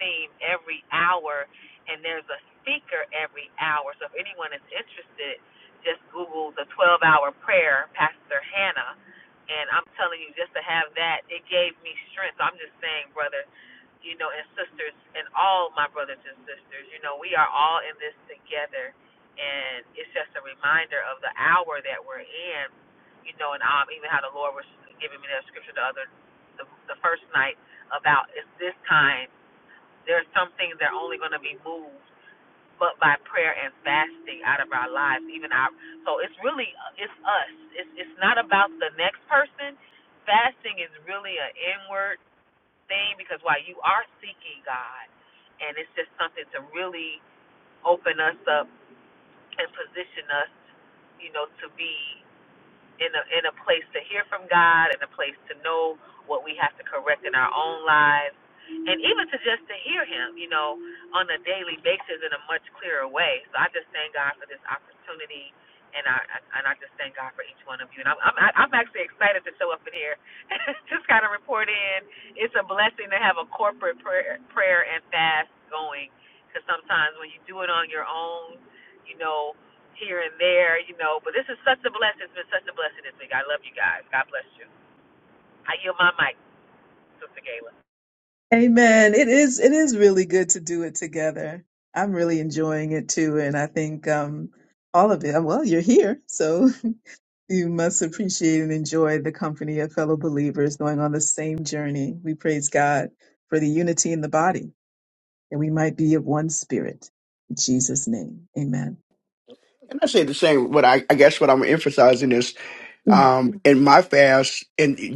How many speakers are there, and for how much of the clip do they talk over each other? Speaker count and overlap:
three, no overlap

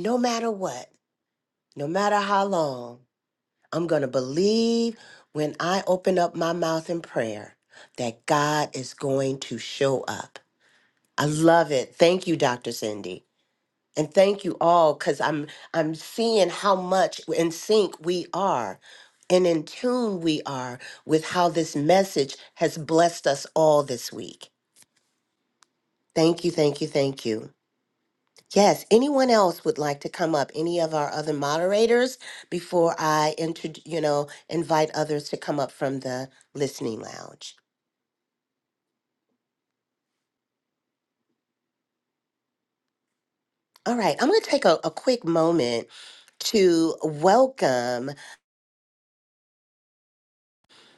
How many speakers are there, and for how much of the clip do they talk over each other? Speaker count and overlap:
one, no overlap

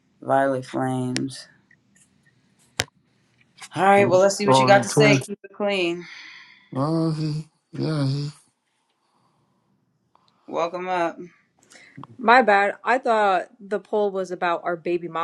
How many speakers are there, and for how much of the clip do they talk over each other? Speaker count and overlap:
three, about 5%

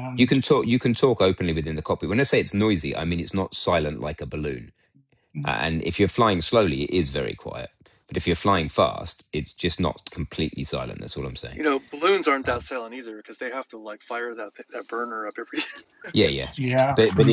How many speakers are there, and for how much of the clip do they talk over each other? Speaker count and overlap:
three, about 6%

